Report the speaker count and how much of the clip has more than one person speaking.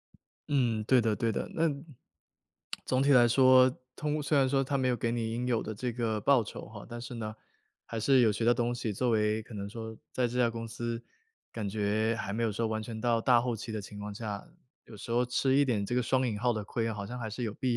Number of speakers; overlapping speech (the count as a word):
one, no overlap